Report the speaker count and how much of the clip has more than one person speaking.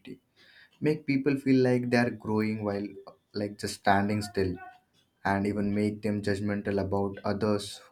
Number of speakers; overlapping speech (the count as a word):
one, no overlap